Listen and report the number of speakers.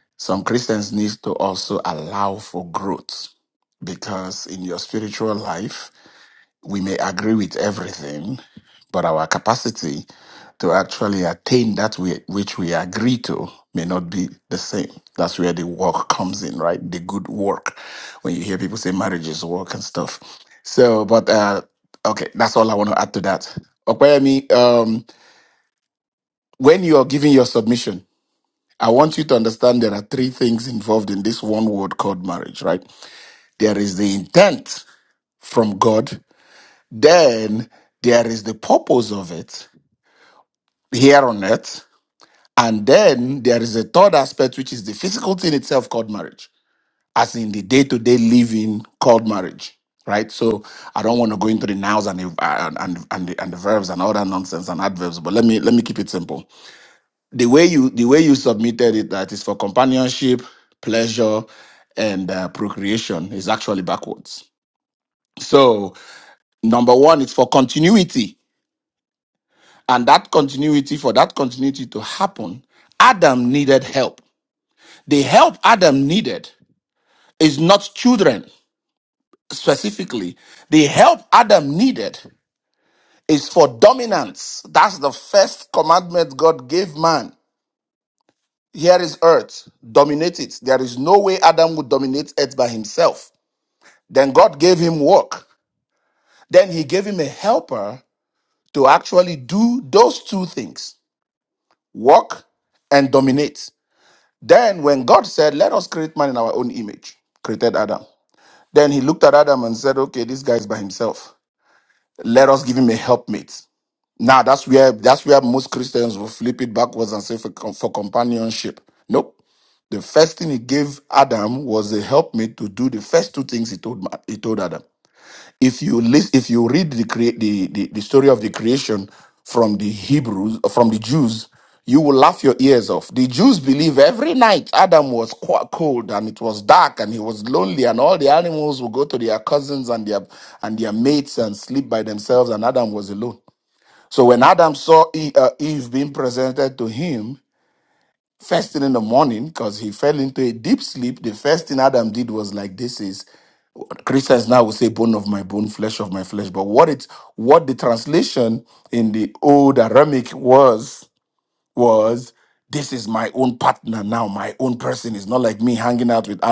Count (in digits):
1